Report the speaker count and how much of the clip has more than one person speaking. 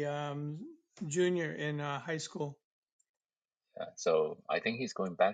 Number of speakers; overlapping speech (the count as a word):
two, no overlap